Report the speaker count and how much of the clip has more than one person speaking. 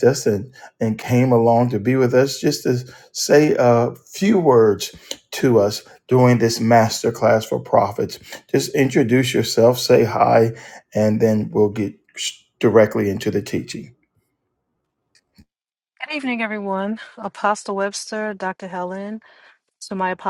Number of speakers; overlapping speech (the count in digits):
2, no overlap